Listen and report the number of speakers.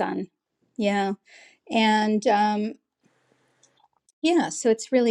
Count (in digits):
1